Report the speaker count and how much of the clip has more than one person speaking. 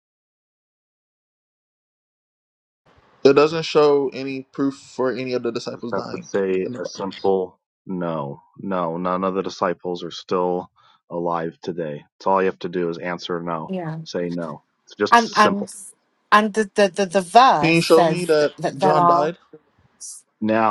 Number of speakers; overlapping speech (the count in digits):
3, about 14%